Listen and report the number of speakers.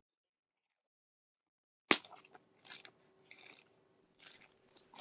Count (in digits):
0